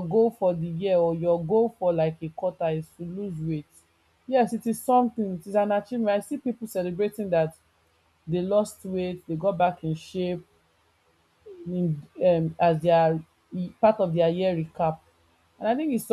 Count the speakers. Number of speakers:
1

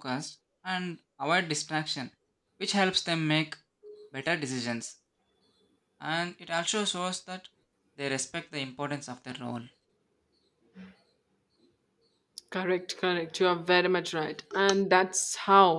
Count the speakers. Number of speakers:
2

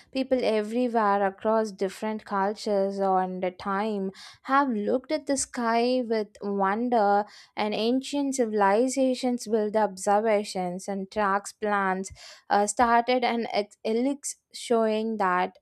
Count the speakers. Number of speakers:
1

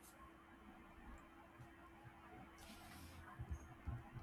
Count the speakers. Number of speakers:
0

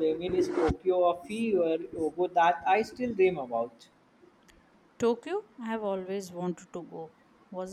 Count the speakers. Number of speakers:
2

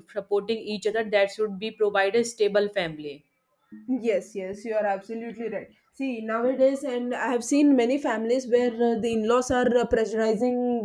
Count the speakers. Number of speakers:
2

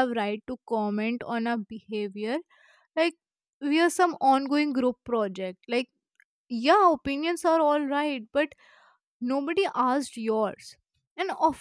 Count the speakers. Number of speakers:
1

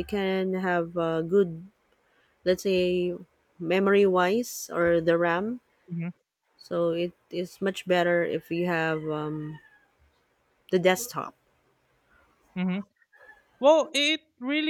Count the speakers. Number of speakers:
2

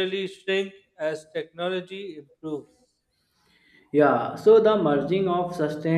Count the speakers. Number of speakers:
2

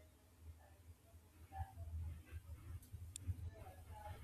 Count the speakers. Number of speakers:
0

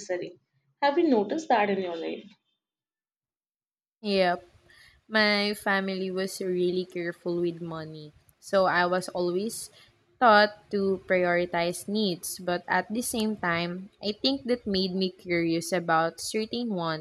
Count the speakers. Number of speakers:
2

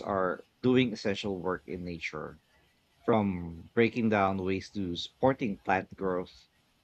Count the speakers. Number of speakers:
1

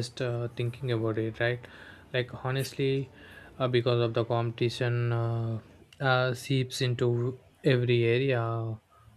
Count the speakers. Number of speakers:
1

